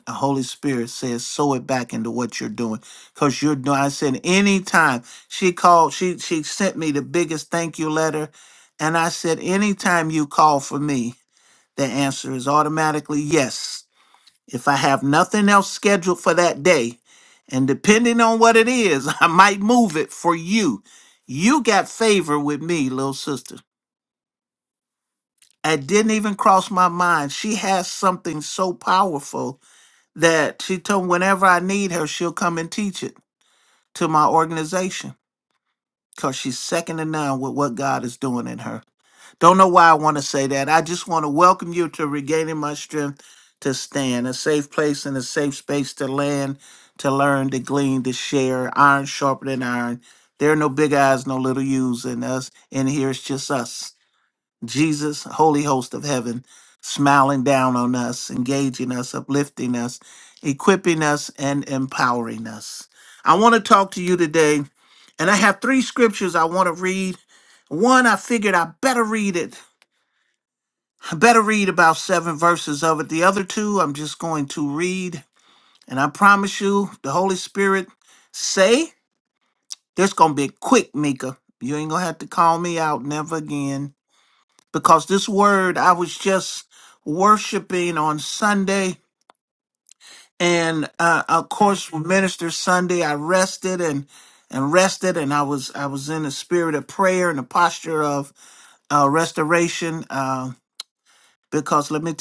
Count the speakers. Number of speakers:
one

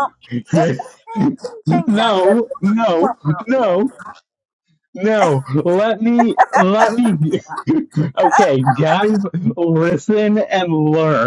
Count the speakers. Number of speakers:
two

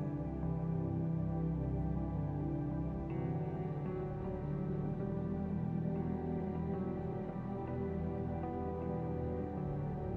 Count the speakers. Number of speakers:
zero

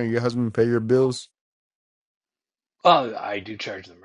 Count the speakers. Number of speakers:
two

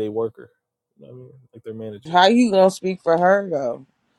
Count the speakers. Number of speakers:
two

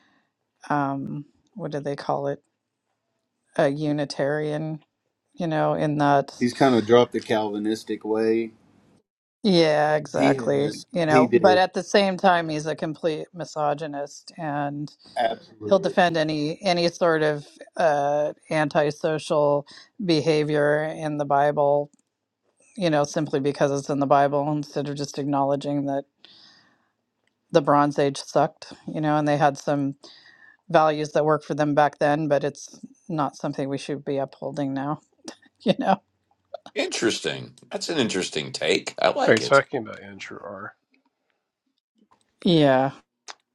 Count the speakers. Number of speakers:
four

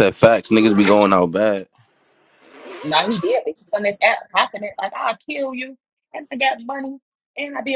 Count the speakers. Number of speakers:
two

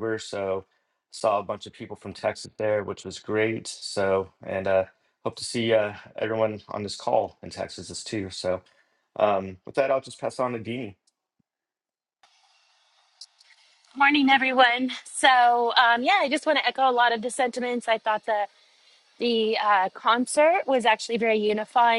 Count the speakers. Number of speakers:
two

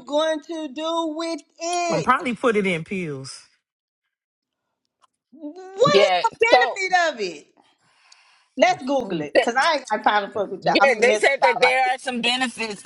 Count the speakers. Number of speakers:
three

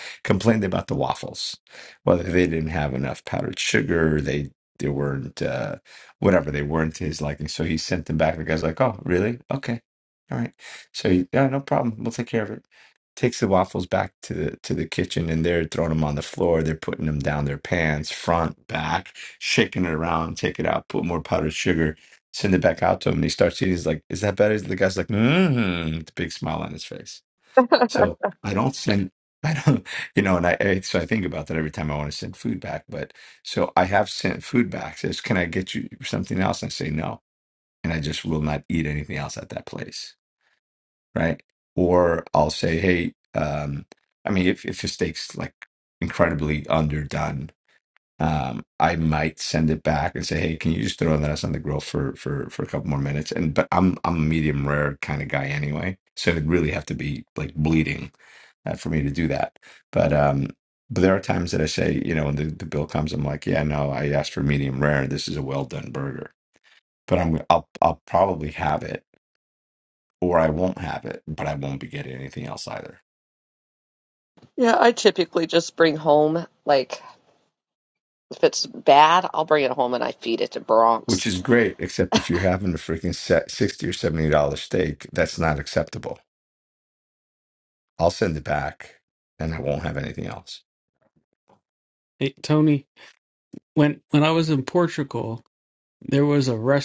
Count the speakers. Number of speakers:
three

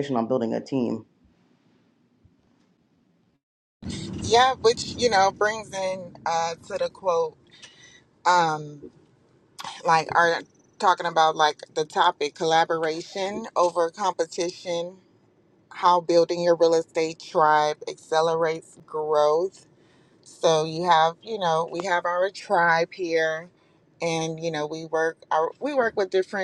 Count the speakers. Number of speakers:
two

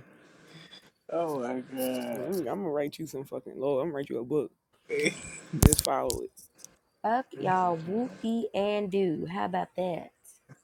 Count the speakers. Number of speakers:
three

